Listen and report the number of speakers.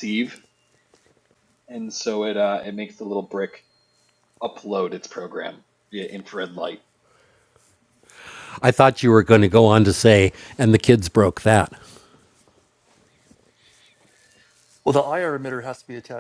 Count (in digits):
3